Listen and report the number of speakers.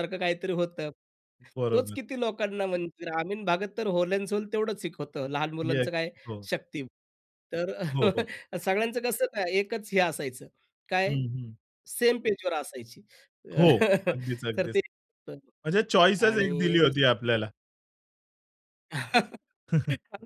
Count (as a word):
two